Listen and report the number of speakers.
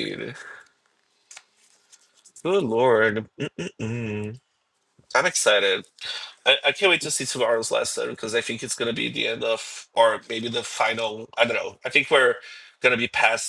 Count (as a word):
one